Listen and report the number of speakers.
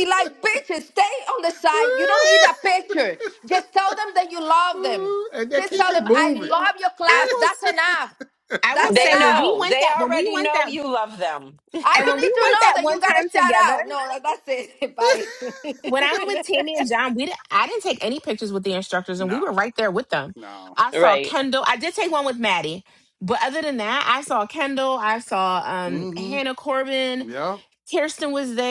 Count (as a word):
four